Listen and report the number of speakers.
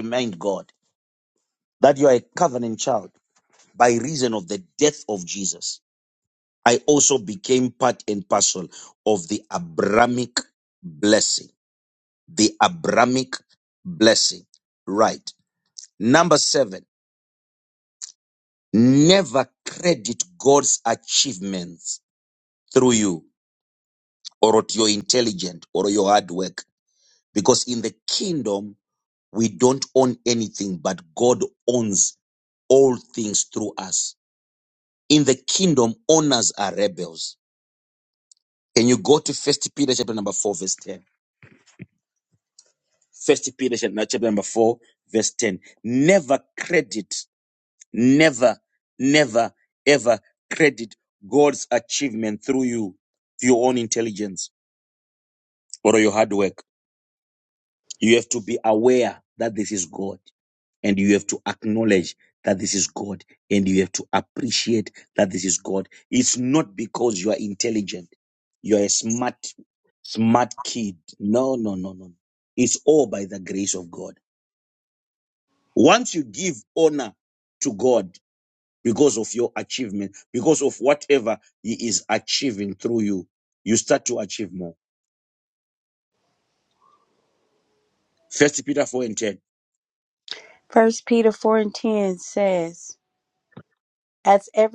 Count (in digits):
2